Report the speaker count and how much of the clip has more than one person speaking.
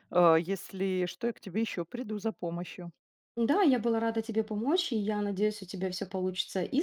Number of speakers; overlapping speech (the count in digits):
2, no overlap